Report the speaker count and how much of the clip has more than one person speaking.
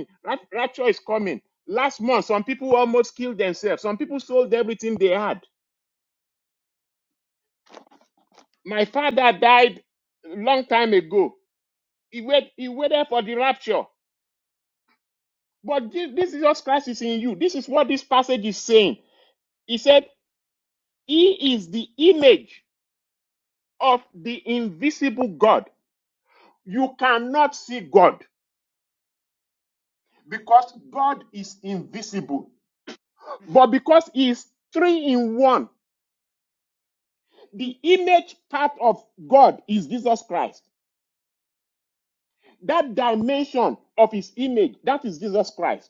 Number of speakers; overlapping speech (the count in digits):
1, no overlap